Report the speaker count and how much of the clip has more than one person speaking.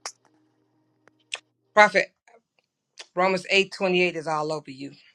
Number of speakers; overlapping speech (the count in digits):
1, no overlap